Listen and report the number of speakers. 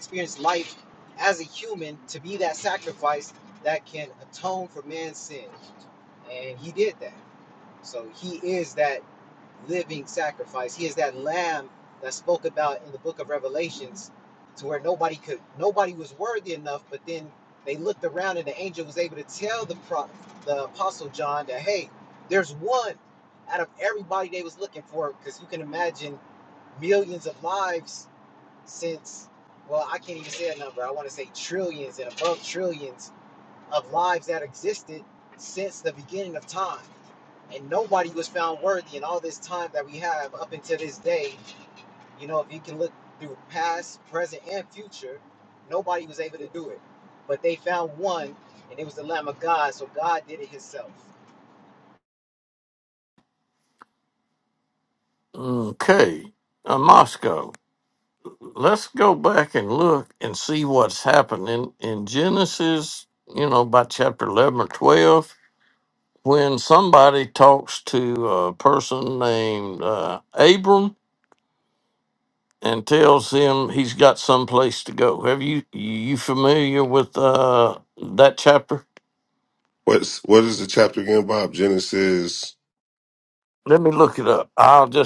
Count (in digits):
3